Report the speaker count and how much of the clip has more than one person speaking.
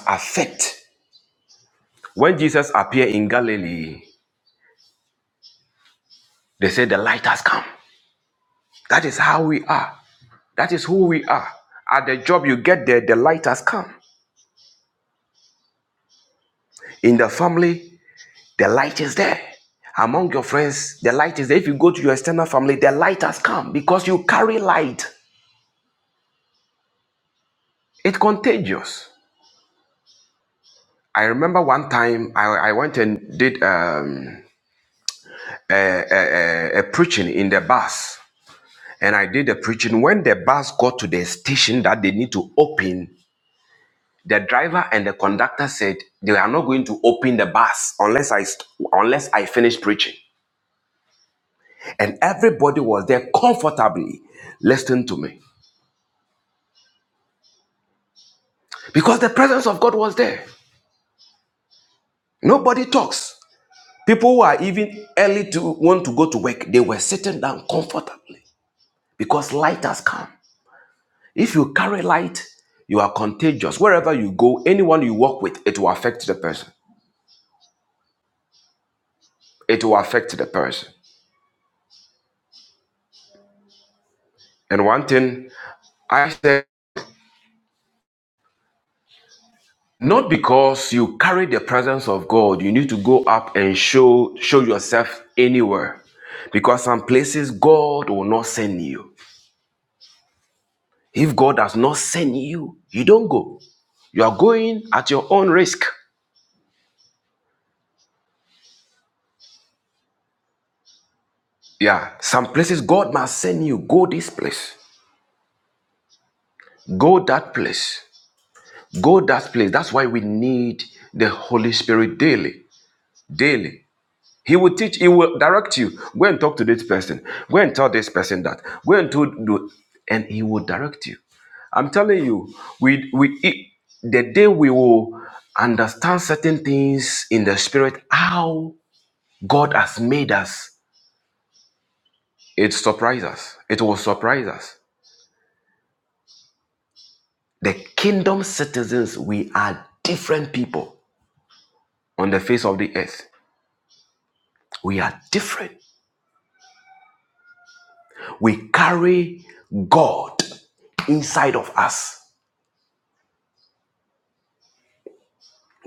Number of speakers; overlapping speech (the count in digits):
1, no overlap